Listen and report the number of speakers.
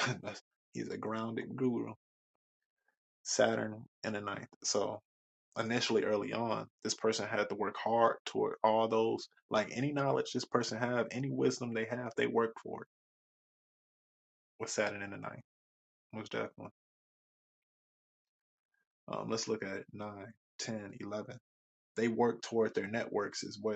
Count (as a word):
one